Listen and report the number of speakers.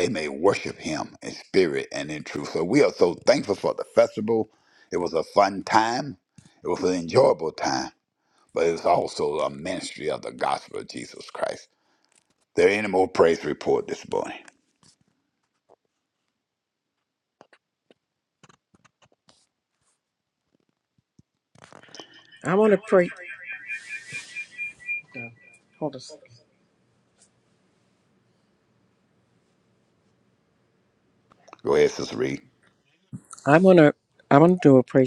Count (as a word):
two